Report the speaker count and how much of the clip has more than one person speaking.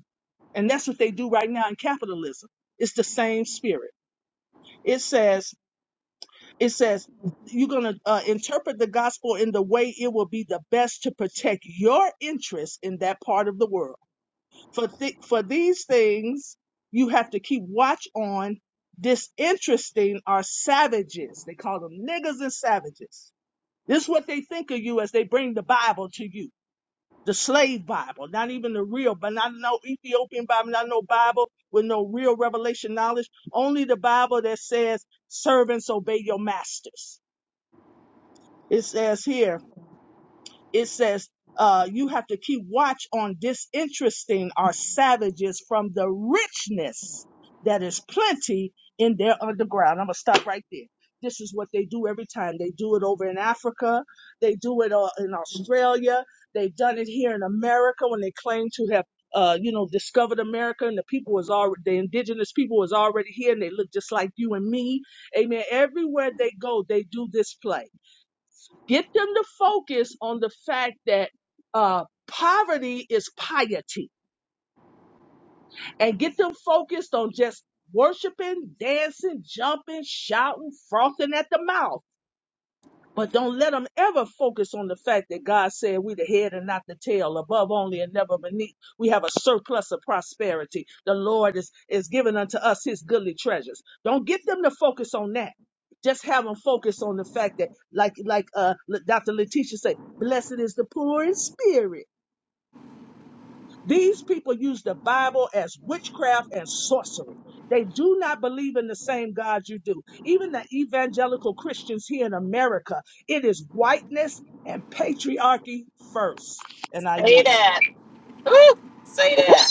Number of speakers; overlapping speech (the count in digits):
2, under 1%